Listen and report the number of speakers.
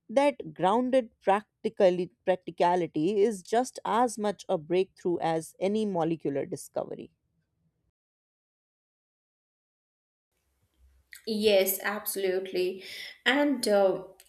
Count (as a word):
two